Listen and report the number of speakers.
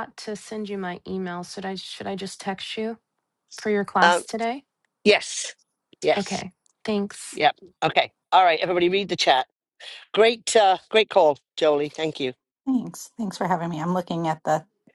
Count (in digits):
3